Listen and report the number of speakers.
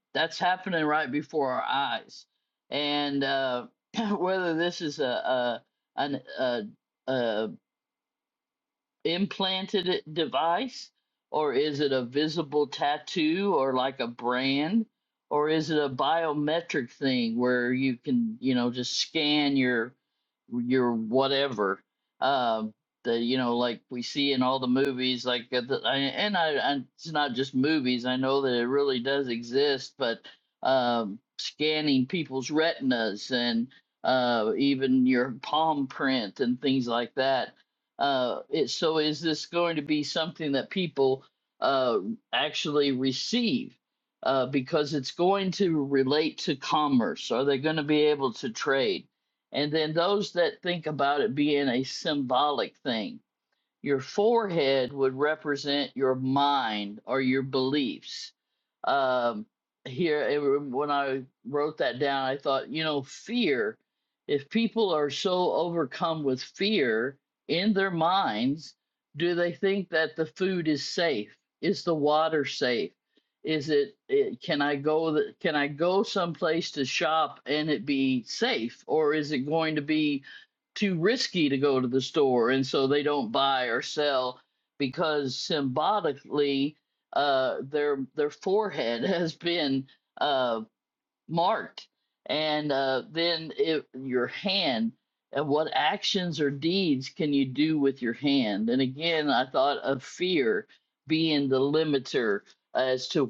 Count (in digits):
1